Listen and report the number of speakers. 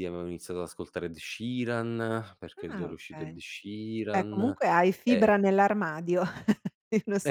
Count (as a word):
two